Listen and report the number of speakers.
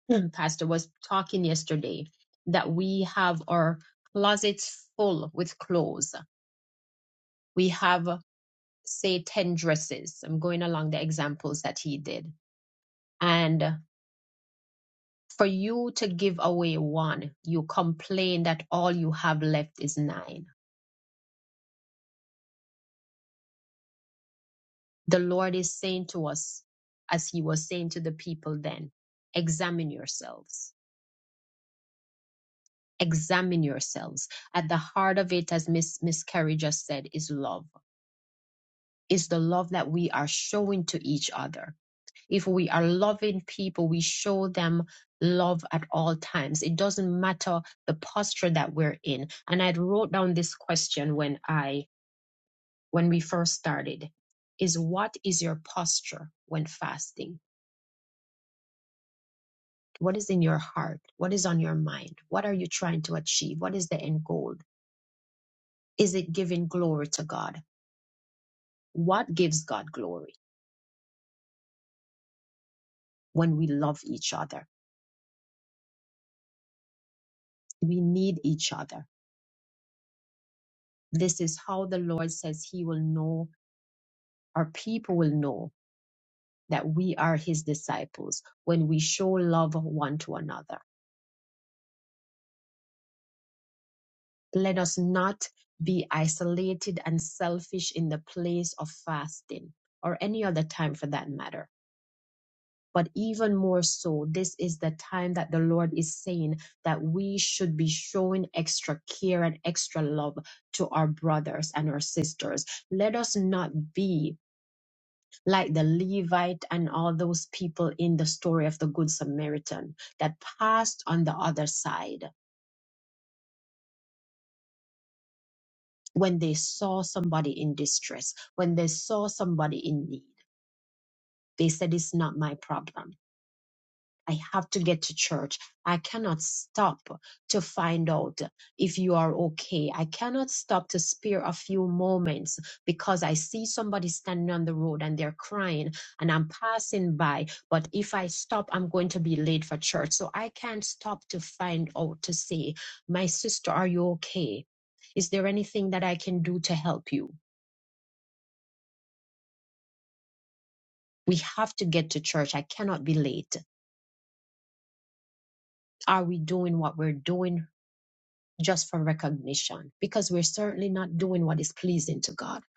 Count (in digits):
1